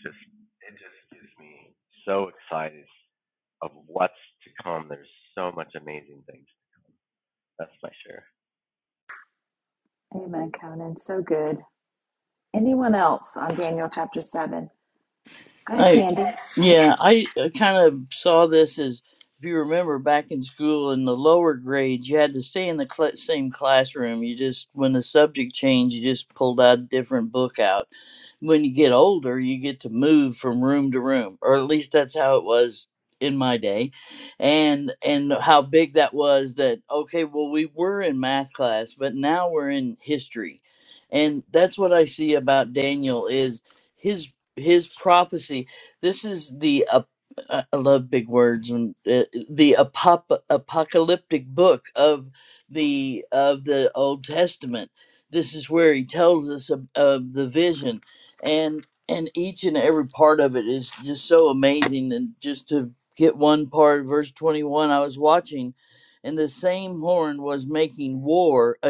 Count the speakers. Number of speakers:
three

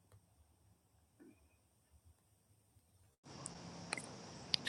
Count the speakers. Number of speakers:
zero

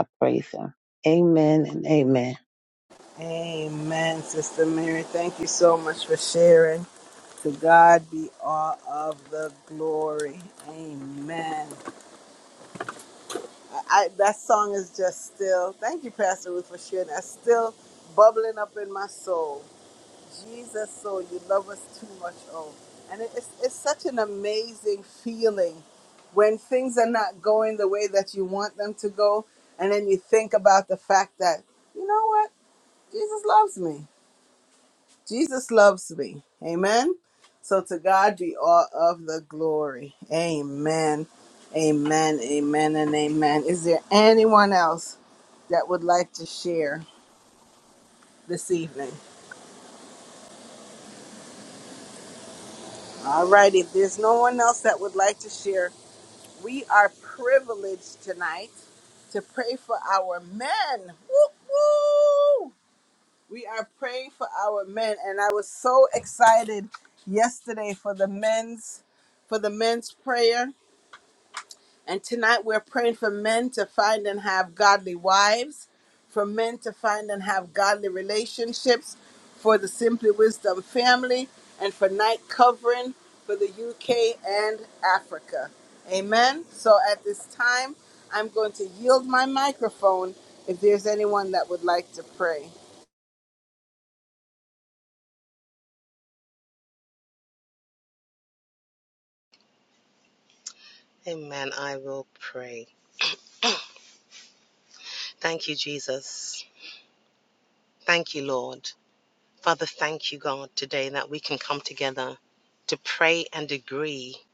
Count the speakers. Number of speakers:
three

